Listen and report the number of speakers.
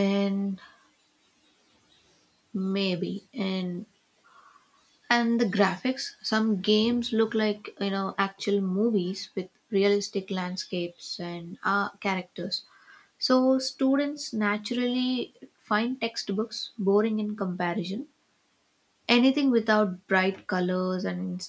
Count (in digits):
1